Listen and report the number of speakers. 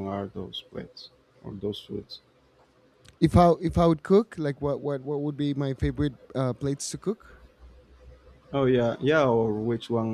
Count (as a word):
two